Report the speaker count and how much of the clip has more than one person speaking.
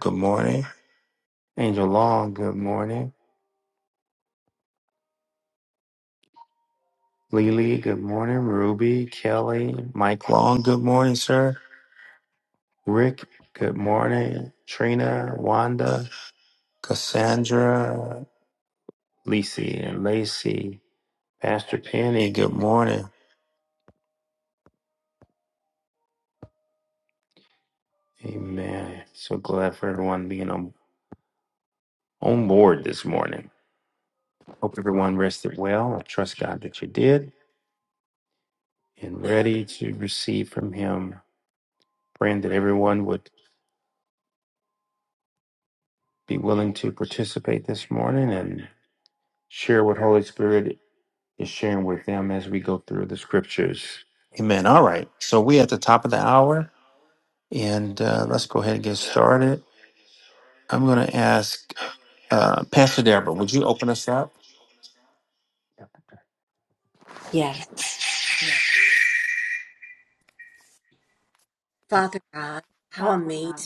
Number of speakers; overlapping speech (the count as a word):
two, no overlap